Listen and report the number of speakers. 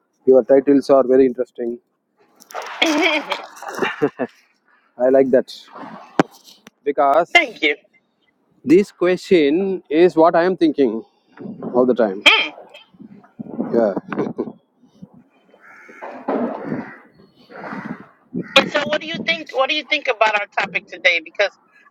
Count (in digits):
2